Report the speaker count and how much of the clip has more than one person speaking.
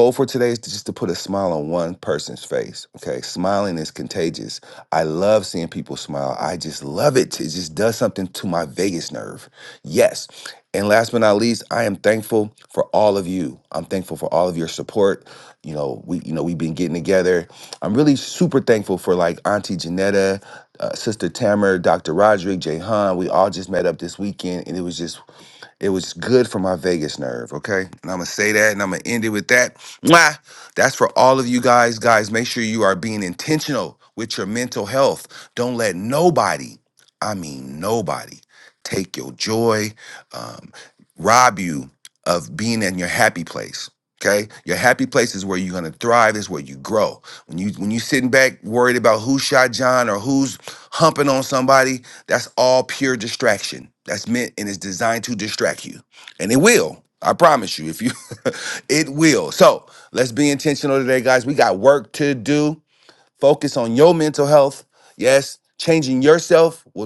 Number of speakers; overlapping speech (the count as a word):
one, no overlap